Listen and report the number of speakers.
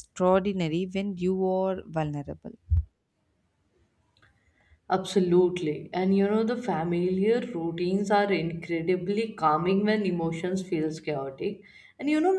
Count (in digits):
2